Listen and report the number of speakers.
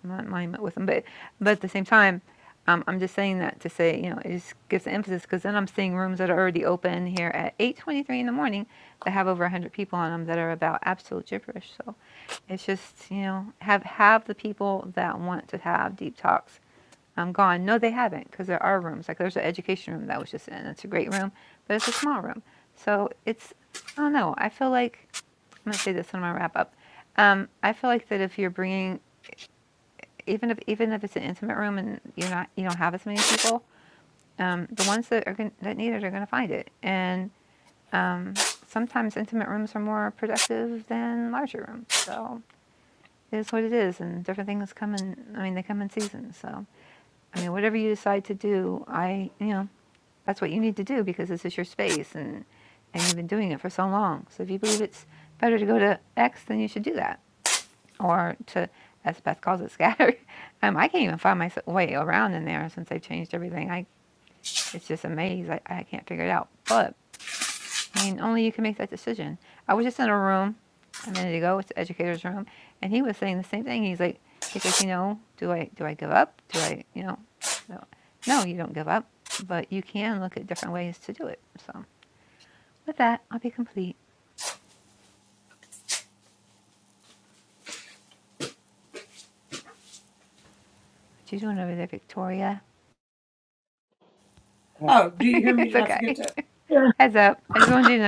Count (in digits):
2